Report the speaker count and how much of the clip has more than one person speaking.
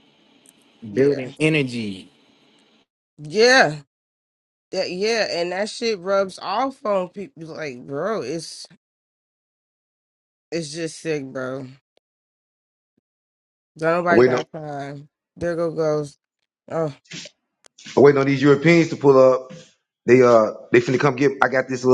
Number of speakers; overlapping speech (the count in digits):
3, about 4%